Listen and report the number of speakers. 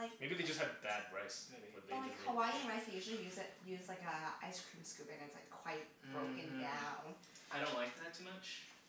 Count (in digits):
3